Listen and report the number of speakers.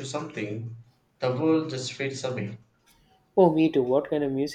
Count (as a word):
two